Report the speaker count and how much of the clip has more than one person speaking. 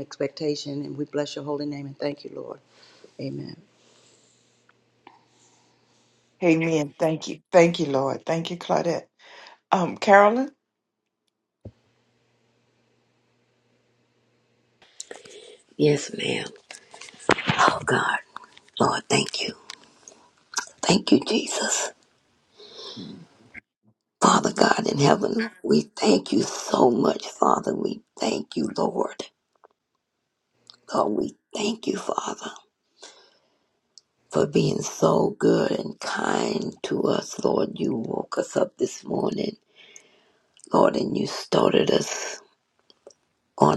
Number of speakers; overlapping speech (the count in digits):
3, about 1%